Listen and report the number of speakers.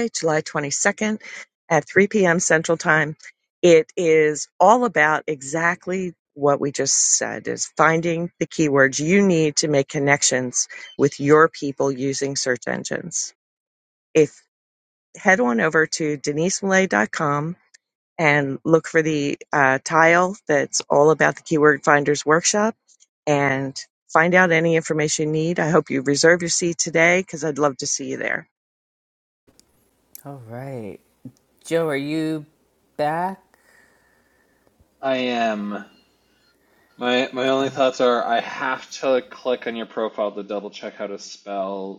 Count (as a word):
three